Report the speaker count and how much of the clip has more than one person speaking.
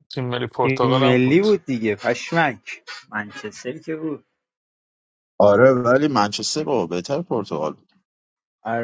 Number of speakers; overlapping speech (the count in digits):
3, about 10%